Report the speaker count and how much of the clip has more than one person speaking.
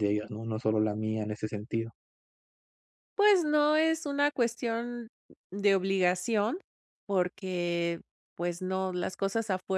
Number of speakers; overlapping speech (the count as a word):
two, no overlap